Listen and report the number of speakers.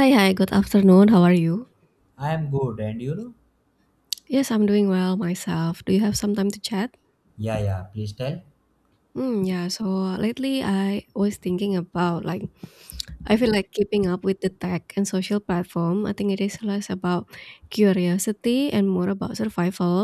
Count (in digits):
2